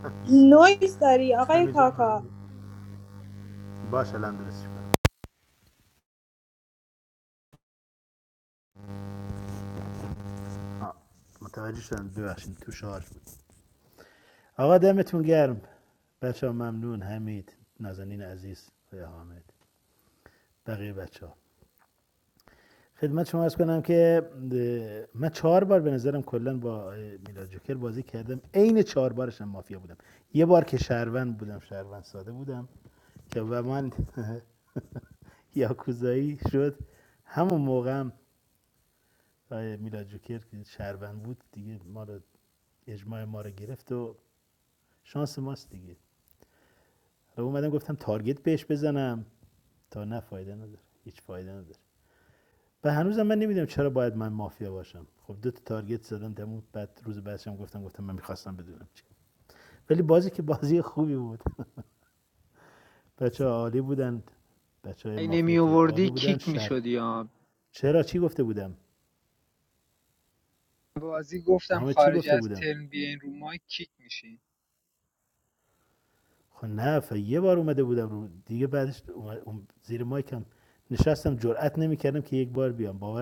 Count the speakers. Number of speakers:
3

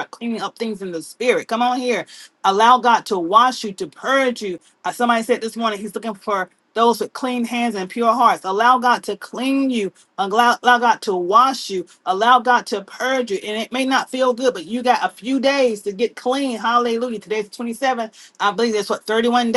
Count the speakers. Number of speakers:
1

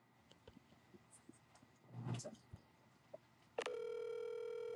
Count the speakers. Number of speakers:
0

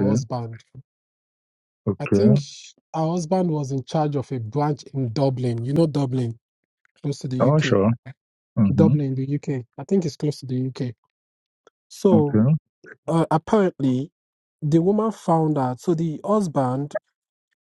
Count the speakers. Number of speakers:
2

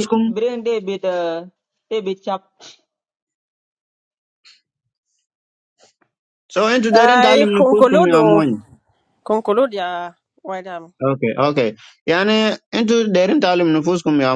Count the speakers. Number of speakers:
3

